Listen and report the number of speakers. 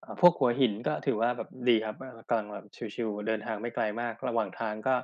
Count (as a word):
one